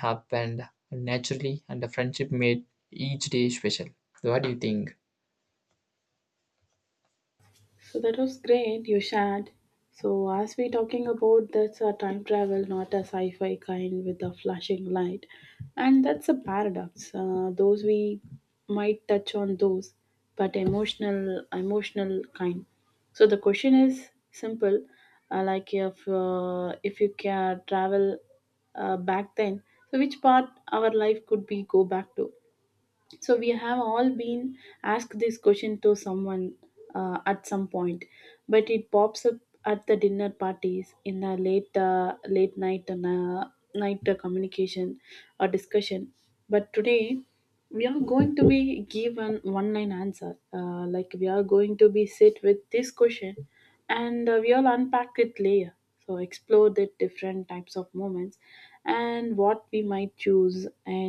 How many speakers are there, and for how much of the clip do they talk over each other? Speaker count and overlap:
two, no overlap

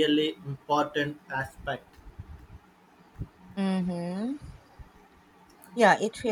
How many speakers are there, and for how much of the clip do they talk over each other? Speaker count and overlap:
two, no overlap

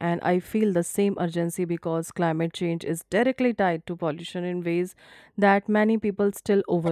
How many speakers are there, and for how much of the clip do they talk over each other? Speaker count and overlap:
one, no overlap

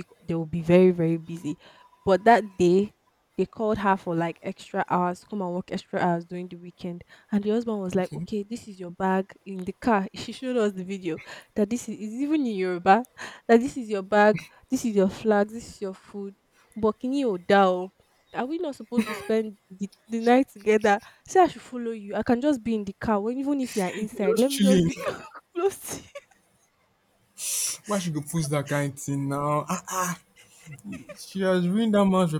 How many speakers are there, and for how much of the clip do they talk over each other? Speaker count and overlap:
two, about 3%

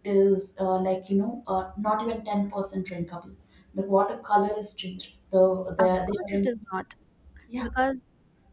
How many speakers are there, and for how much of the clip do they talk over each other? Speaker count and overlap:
two, about 10%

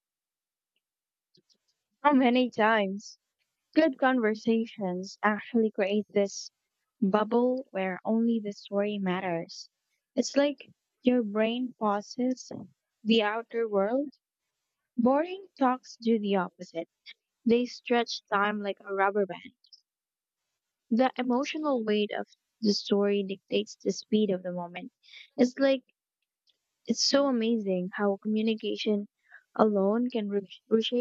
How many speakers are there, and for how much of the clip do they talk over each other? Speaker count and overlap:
one, no overlap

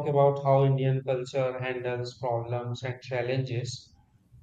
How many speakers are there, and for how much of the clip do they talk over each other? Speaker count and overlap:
one, no overlap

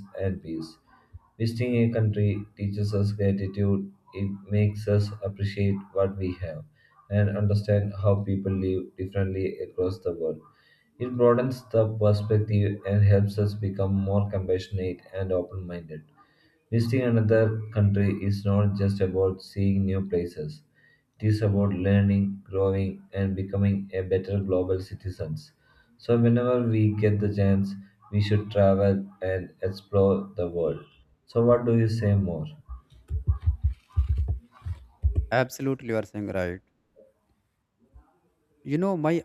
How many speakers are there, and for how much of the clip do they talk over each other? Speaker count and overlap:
two, no overlap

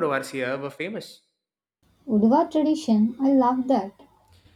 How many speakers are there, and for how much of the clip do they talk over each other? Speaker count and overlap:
two, no overlap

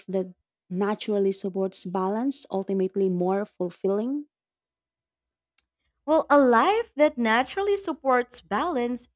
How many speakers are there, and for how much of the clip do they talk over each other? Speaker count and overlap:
two, no overlap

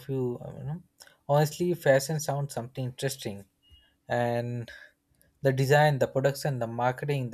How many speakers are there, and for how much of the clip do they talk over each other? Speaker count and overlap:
one, no overlap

